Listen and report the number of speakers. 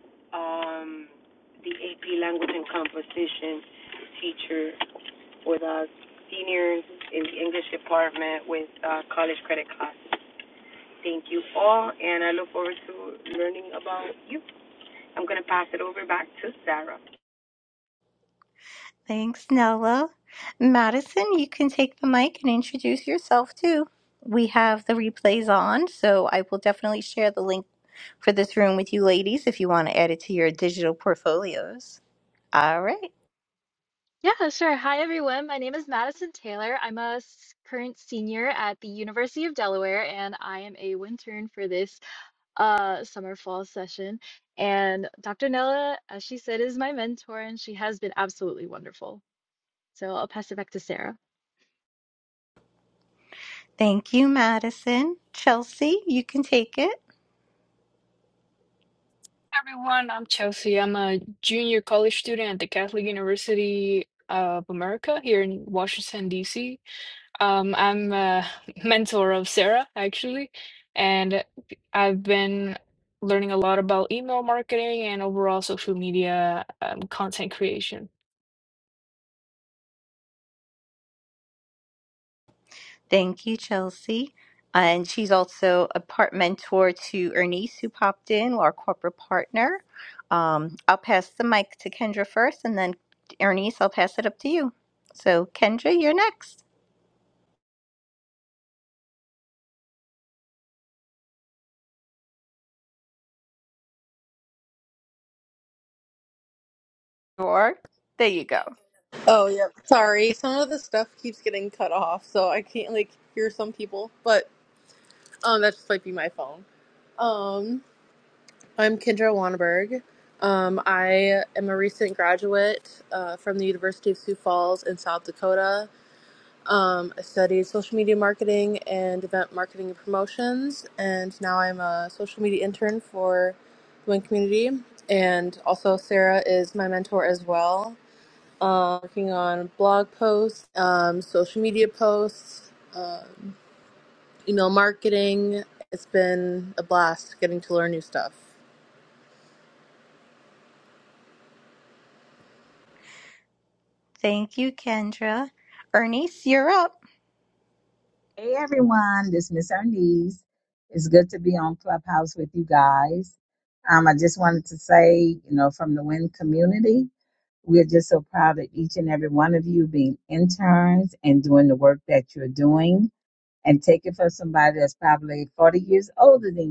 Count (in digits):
6